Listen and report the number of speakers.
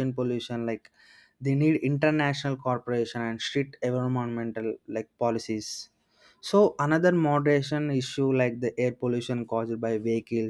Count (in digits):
1